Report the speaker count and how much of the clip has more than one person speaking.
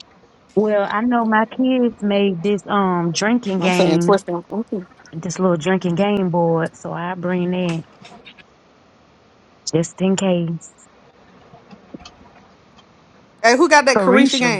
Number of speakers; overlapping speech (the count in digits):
2, about 8%